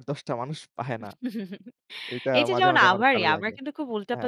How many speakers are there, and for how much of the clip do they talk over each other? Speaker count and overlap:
two, about 32%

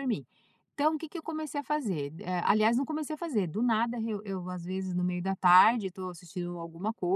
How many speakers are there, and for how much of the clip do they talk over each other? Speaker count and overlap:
one, no overlap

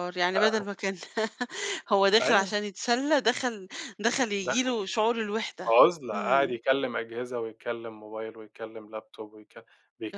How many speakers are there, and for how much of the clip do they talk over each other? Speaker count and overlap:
two, about 15%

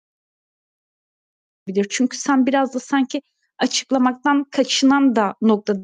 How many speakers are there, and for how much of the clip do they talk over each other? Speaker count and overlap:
one, no overlap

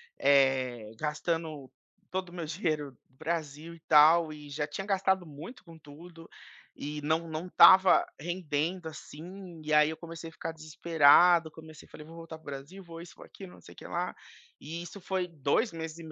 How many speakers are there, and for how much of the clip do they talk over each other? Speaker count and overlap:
one, no overlap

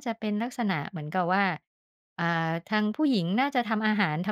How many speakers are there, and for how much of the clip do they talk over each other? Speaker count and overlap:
one, no overlap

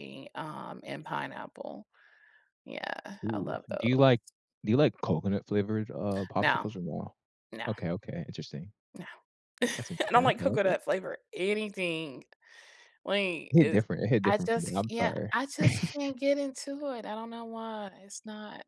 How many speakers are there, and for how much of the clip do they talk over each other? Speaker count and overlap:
two, about 18%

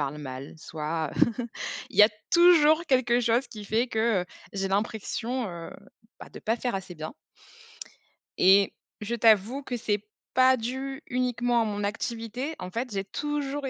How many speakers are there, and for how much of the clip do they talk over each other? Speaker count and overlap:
one, no overlap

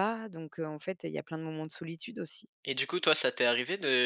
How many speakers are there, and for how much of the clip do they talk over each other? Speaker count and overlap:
two, no overlap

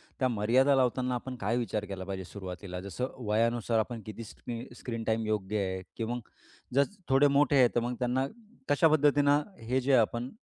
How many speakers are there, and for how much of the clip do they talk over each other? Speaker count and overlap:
one, no overlap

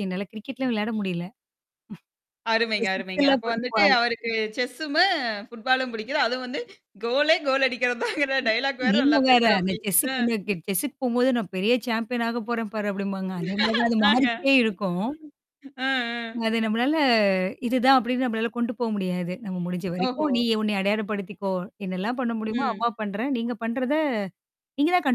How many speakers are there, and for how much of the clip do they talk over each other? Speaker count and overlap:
two, about 15%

